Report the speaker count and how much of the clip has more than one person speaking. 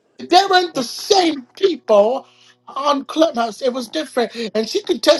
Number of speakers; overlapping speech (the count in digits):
1, no overlap